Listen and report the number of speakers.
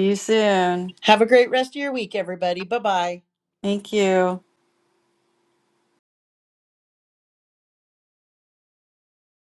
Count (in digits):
2